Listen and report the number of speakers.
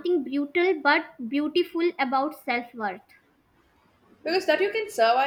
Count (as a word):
two